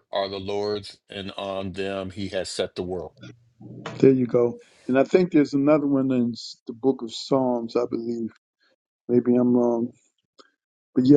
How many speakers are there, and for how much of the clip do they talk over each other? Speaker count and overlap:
2, no overlap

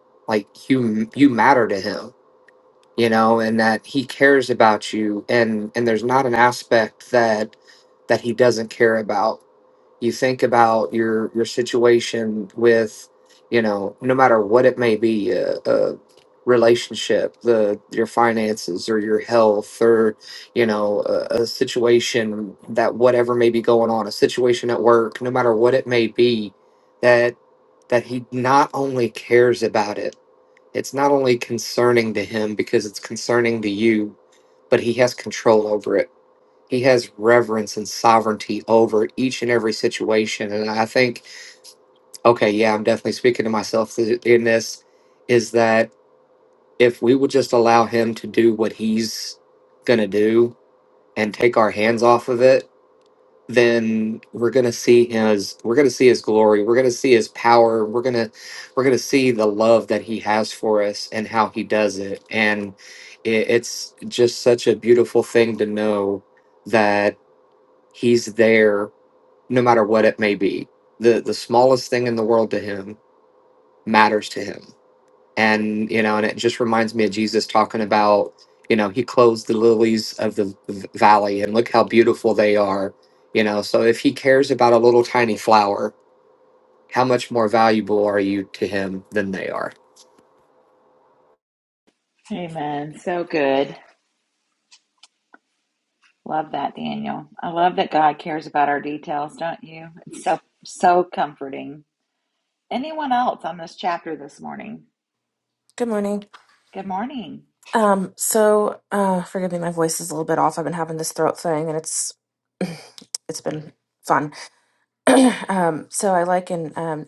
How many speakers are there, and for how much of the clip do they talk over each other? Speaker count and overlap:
3, no overlap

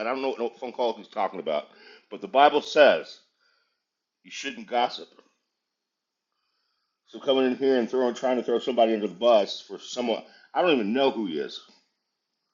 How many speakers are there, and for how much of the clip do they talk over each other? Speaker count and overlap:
1, no overlap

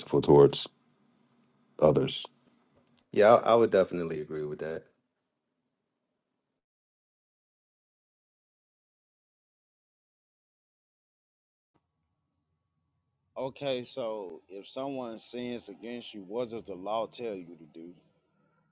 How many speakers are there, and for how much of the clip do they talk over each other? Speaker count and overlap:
3, no overlap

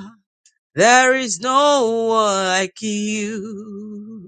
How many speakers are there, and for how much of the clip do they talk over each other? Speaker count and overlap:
1, no overlap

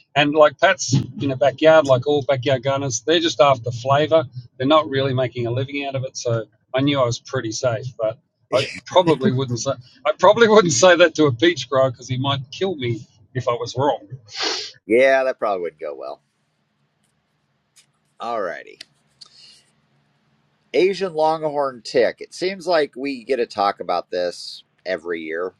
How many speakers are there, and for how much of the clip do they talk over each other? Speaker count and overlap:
2, no overlap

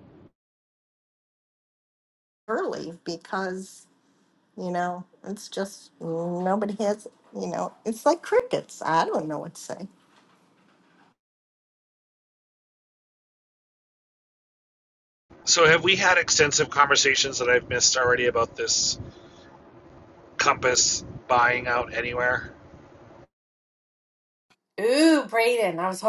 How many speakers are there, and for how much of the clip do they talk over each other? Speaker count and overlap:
3, no overlap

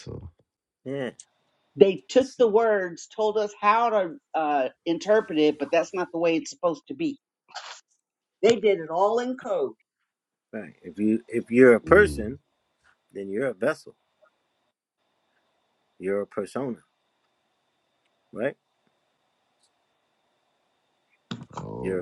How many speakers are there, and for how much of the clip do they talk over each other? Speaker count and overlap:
3, about 4%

